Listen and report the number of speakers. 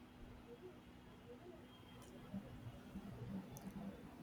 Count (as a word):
zero